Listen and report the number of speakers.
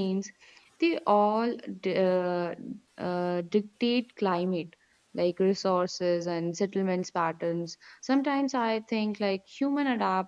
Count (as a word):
one